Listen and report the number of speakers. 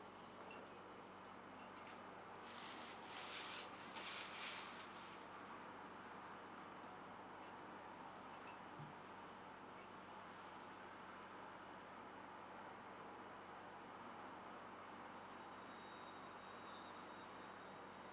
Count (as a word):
zero